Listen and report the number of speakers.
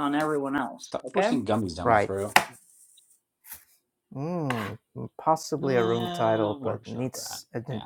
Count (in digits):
3